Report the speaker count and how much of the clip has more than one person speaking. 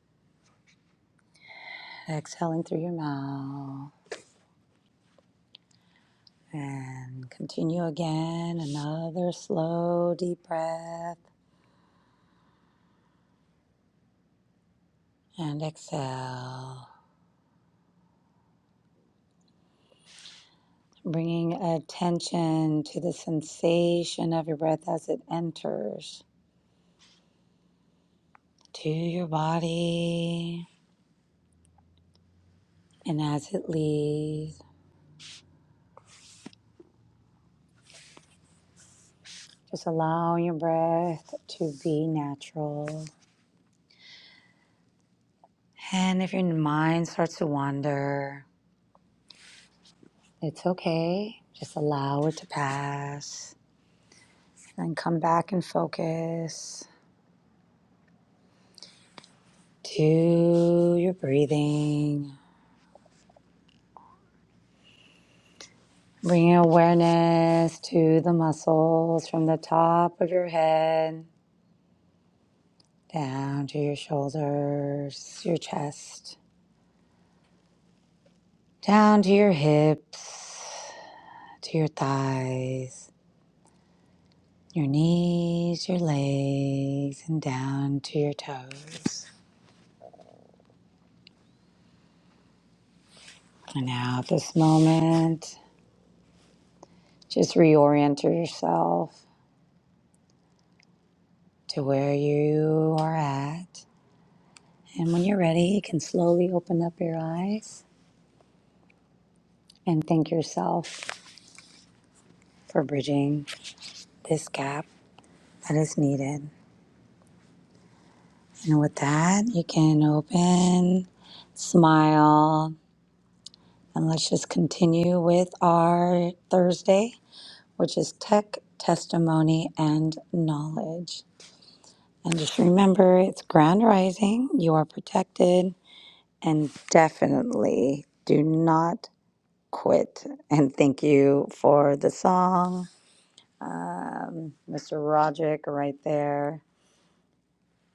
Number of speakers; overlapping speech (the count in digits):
1, no overlap